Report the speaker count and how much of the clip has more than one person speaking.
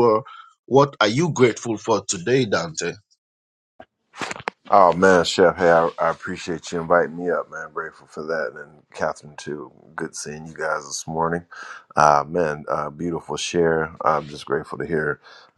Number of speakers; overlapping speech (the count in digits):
2, no overlap